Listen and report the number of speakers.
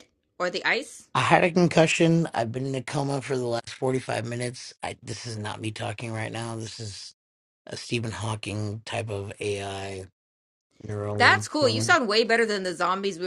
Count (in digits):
2